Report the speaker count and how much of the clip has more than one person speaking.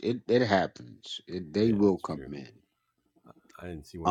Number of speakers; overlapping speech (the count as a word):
two, about 20%